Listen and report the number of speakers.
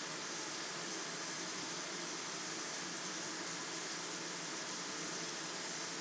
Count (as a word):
zero